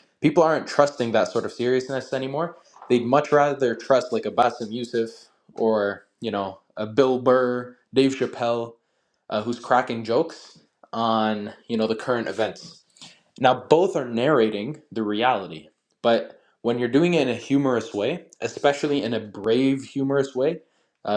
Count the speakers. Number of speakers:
1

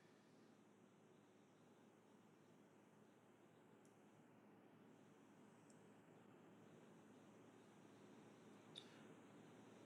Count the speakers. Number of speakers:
0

